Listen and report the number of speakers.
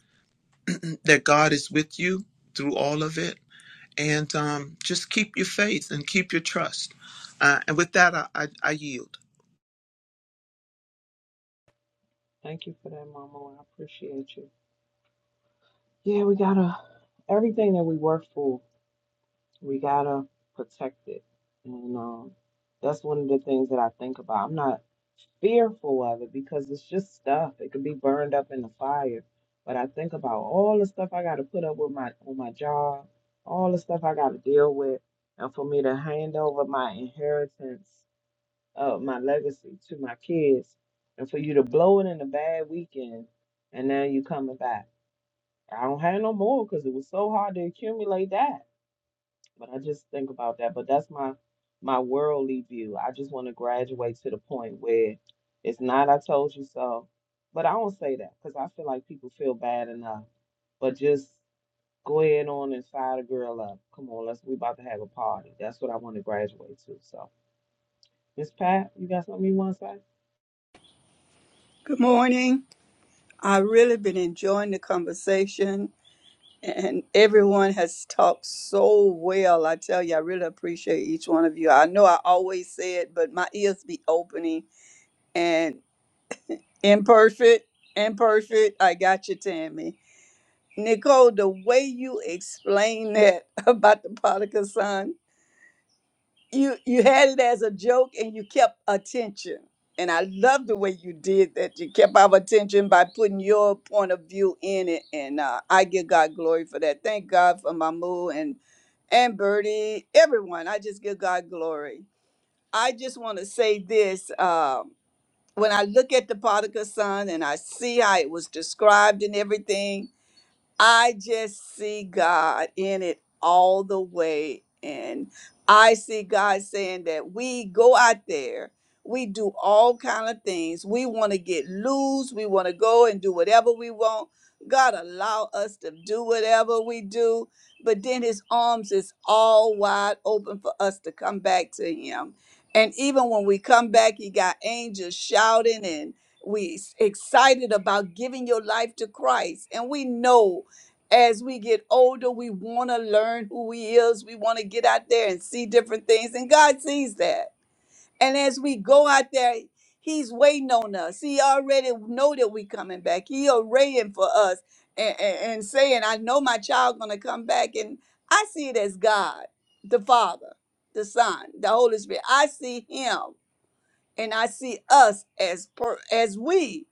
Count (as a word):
three